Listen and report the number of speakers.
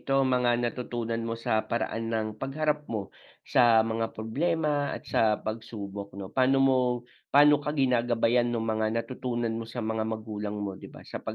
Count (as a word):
one